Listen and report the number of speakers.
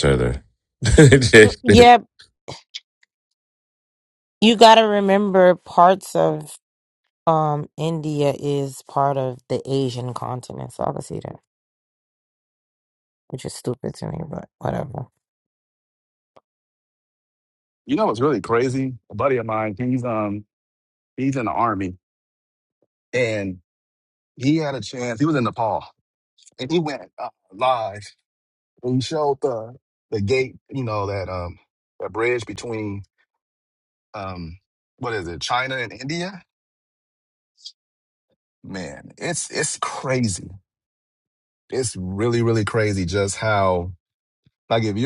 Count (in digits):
3